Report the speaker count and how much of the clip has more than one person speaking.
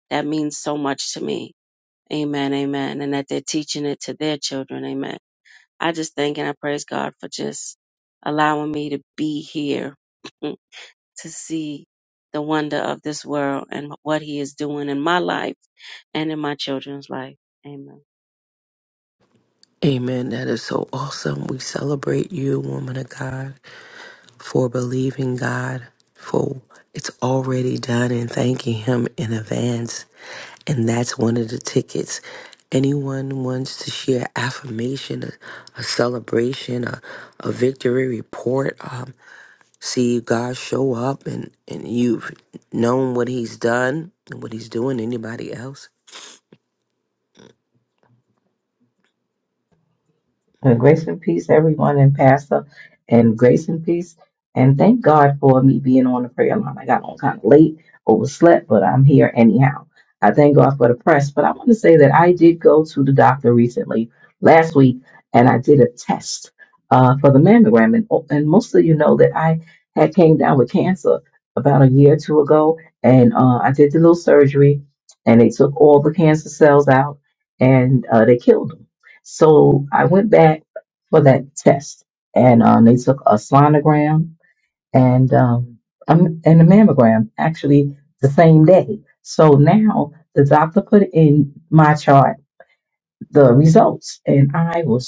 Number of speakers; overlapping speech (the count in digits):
3, no overlap